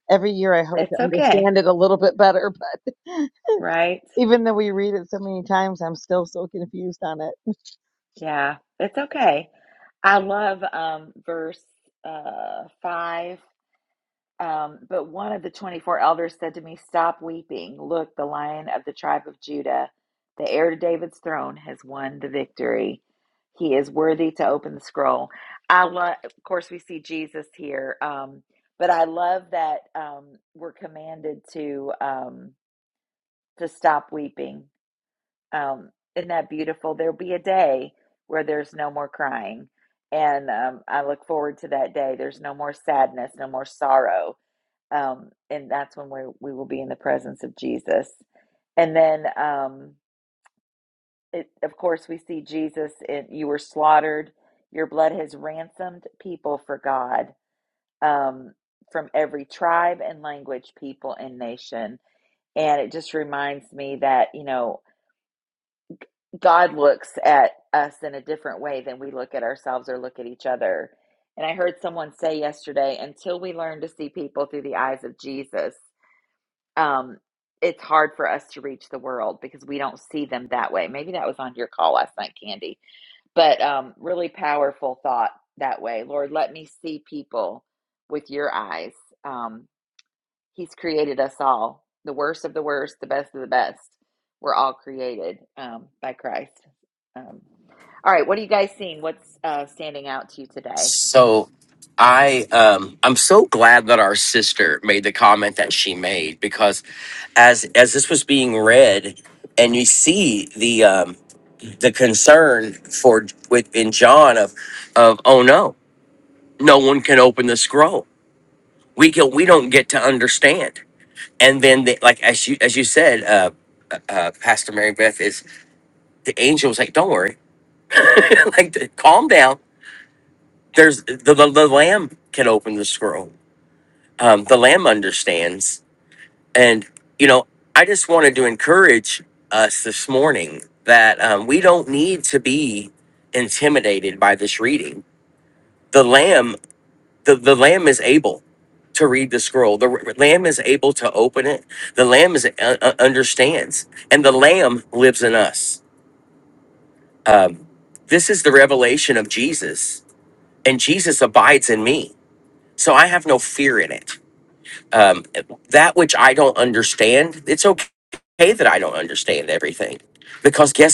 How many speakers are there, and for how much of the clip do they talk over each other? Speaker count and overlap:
three, under 1%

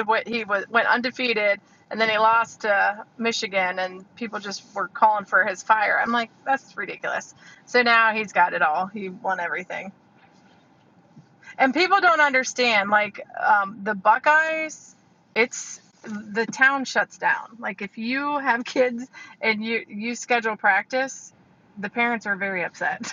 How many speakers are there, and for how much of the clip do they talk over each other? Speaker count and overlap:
one, no overlap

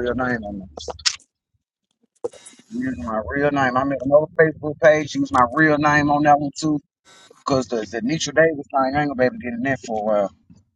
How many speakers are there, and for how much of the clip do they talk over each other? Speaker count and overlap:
one, no overlap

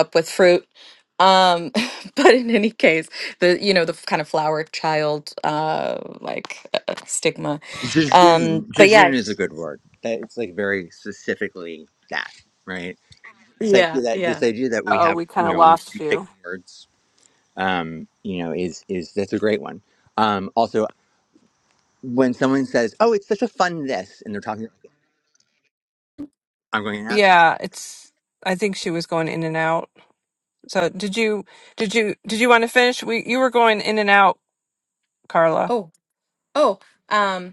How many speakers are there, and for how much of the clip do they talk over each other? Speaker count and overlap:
three, about 9%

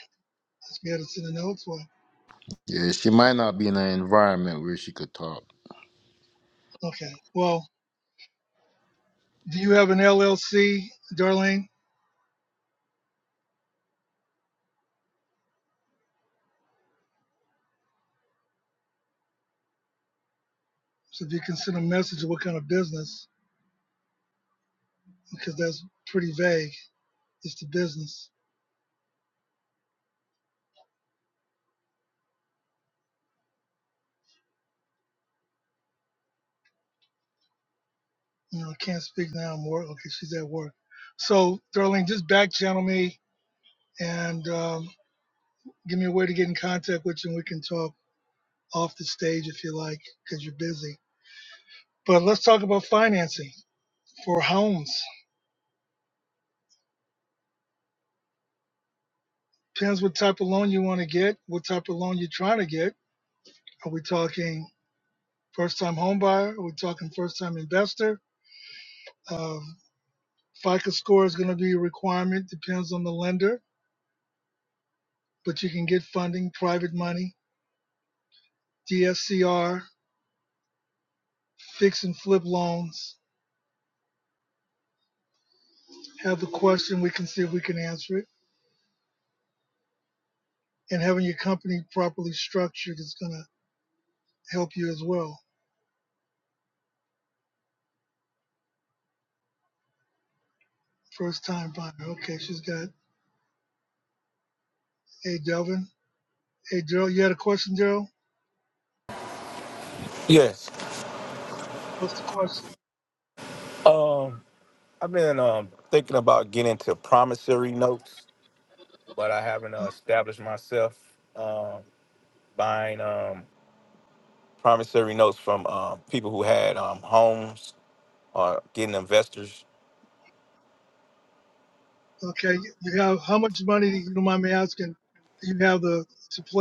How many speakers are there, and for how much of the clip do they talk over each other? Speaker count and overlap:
three, under 1%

